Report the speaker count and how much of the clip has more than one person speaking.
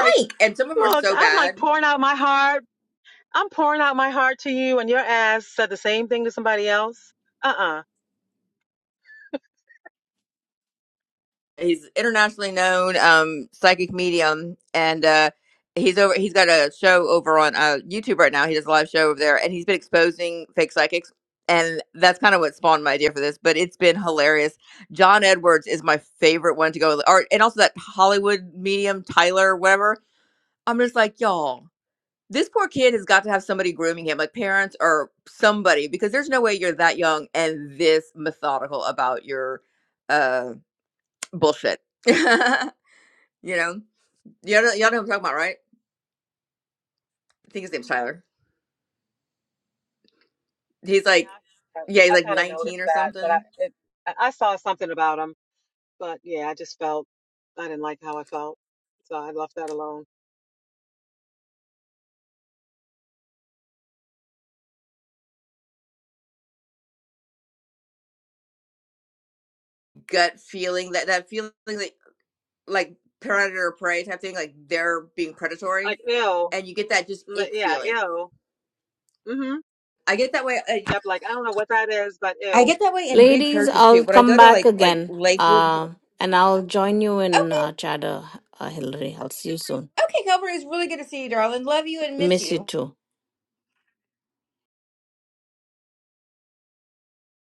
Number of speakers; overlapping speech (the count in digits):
3, about 7%